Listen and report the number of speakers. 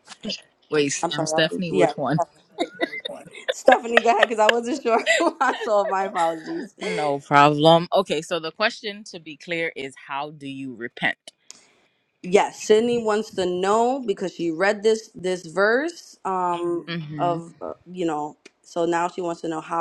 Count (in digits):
2